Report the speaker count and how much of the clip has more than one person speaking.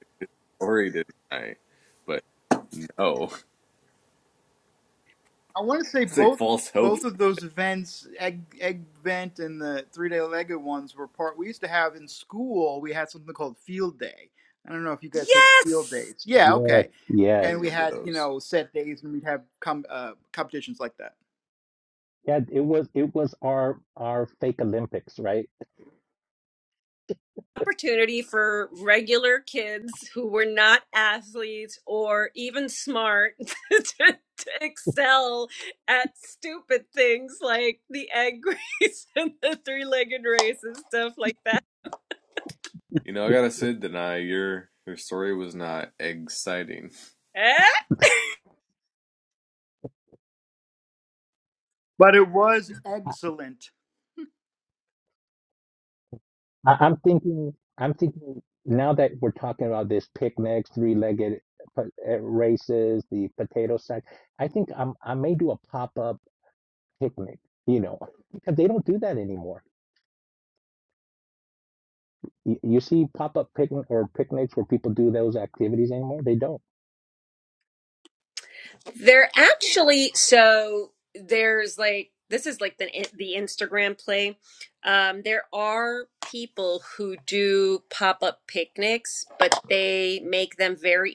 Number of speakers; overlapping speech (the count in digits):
4, about 3%